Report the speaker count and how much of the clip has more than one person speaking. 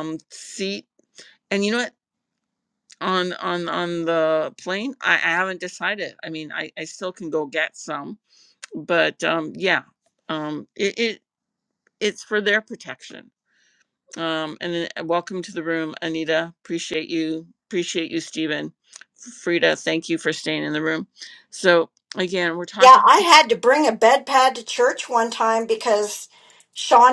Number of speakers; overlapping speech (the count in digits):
2, about 1%